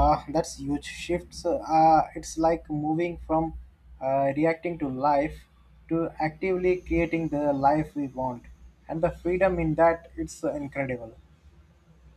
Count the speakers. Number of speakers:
one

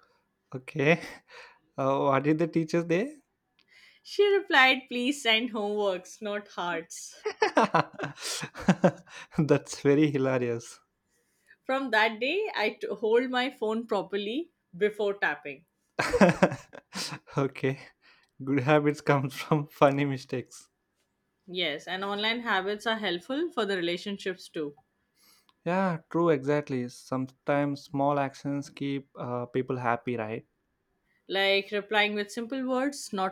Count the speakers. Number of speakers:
two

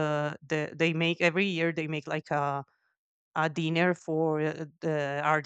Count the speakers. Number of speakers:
one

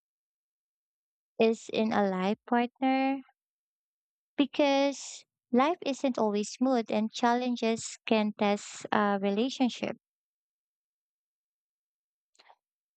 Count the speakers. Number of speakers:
one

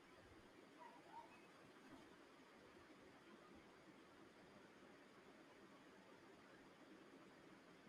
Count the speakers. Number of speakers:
zero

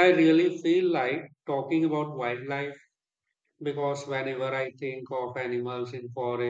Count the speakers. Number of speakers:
one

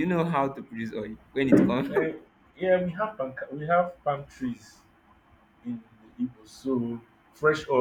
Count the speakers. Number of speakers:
two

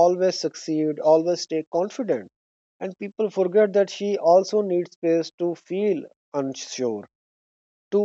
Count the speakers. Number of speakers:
one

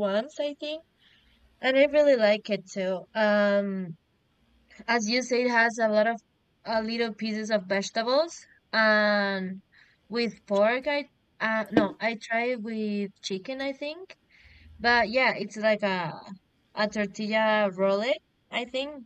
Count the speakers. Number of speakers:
one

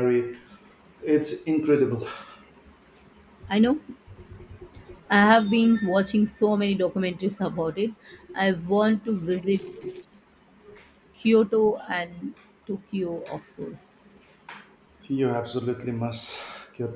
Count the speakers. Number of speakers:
two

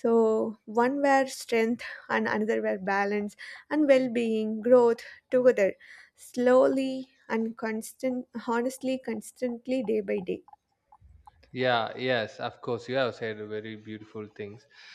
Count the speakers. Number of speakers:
two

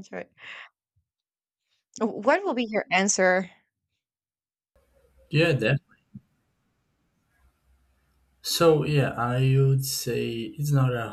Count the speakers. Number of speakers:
two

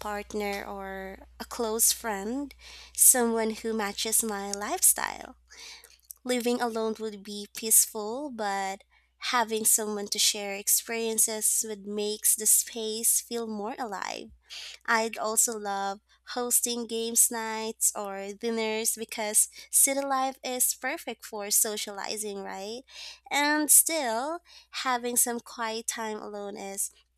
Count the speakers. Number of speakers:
one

